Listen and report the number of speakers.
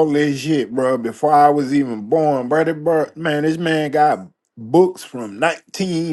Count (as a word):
one